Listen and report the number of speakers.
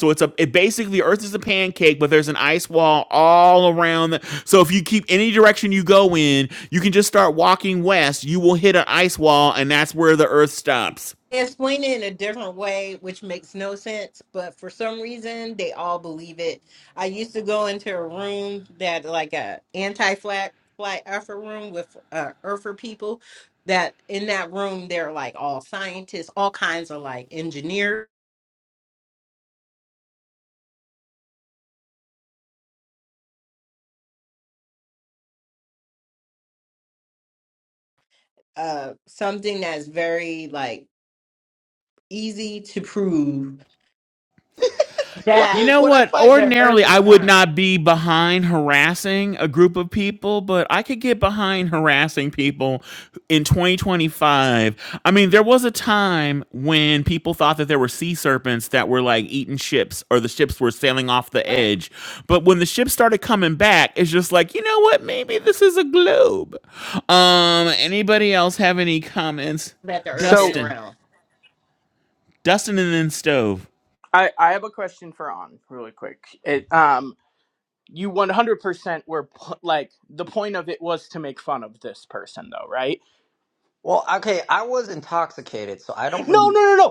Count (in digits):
4